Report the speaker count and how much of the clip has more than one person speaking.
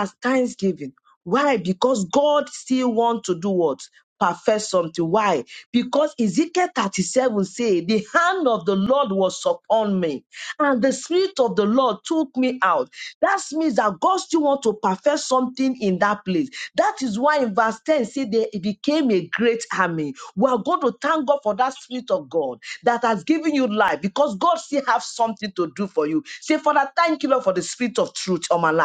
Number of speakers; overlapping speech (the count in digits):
1, no overlap